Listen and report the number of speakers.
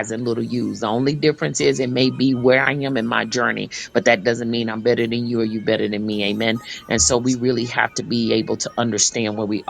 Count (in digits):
1